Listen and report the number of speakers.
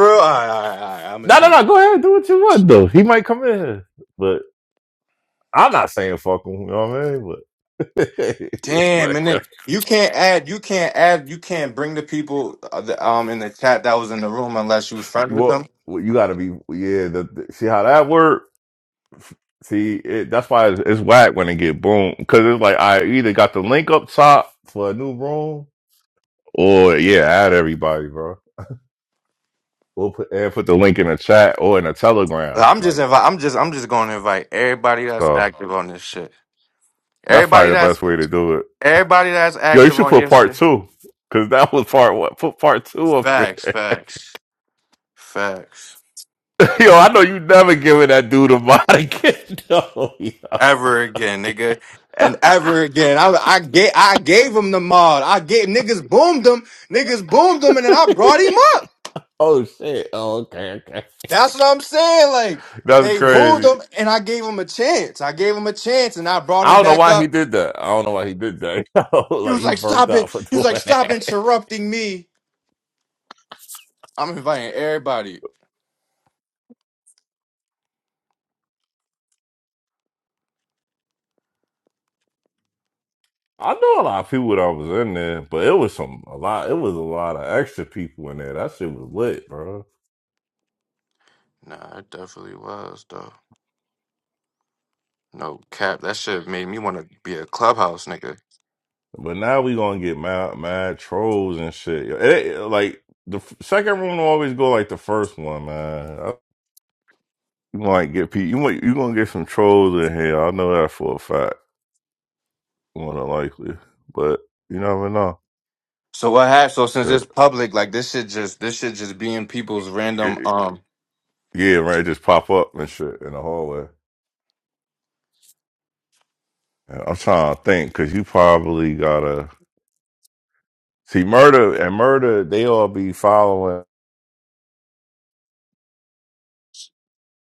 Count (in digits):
2